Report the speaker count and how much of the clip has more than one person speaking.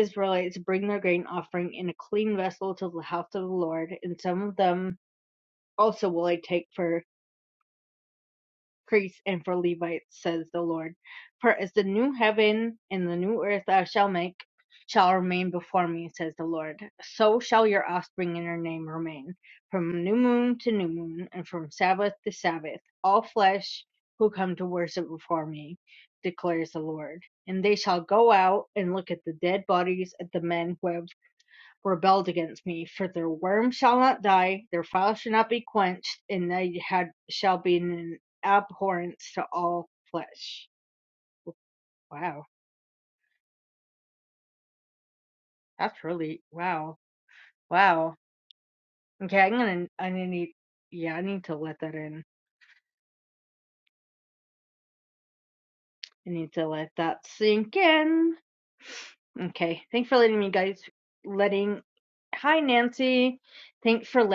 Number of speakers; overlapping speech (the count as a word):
one, no overlap